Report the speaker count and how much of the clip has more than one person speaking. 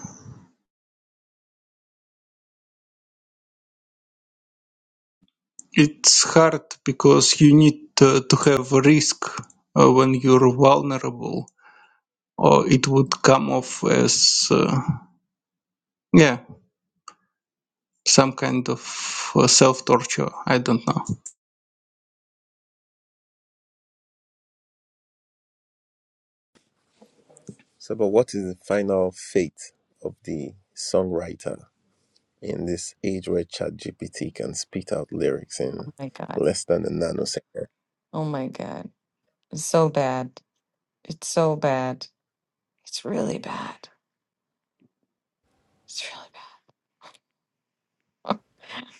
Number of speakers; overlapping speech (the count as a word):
three, under 1%